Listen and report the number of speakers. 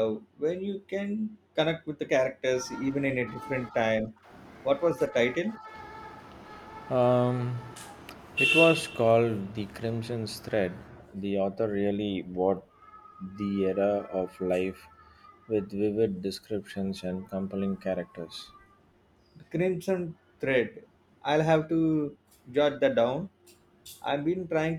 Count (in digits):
2